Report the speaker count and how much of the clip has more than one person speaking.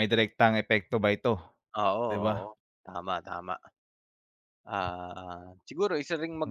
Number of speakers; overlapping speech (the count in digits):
2, about 6%